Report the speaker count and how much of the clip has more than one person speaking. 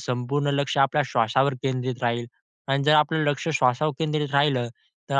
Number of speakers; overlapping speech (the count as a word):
one, no overlap